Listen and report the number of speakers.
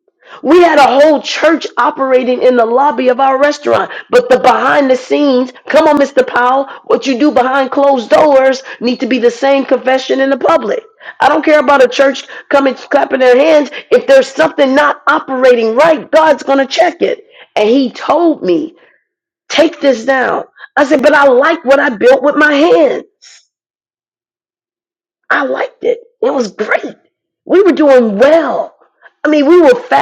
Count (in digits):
1